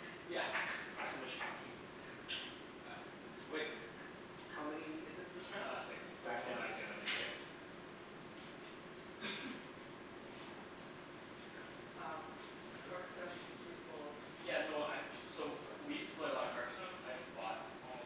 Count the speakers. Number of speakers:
three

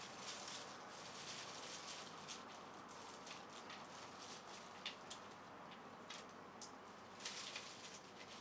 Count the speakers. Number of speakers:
zero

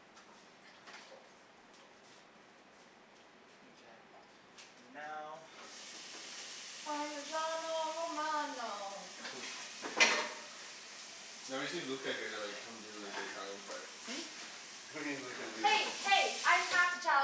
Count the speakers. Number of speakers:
three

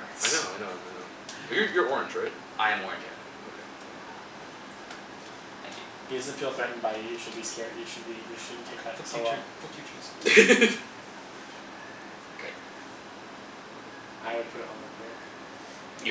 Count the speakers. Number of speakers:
three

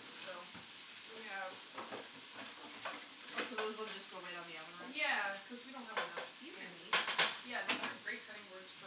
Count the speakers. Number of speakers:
two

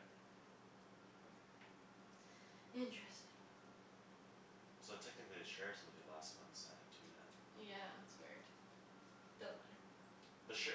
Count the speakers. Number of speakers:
two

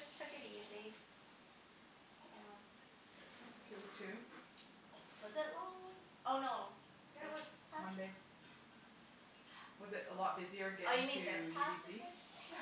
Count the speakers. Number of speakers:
two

